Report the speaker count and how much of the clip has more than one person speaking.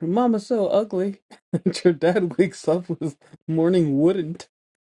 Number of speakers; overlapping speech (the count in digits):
1, no overlap